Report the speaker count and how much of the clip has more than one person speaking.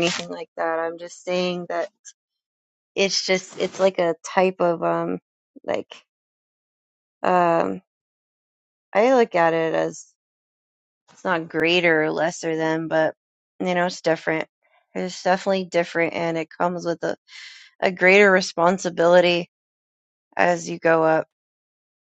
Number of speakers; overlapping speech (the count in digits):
1, no overlap